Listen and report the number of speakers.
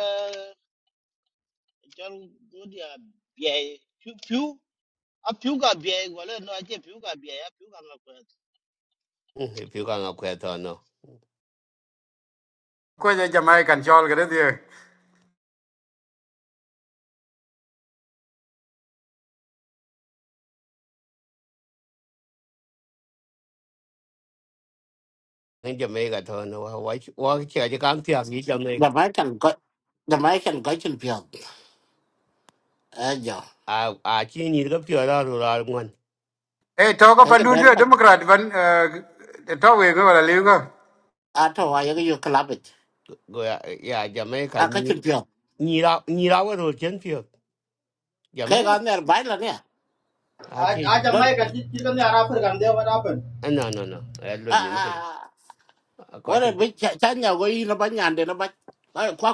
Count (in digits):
5